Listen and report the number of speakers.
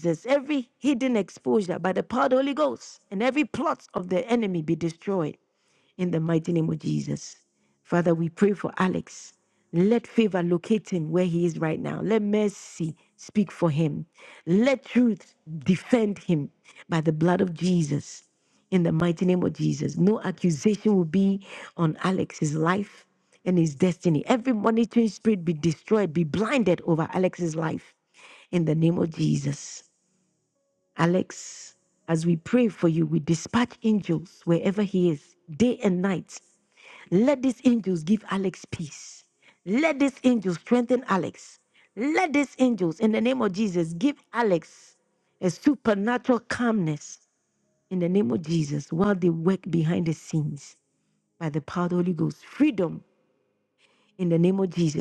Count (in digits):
1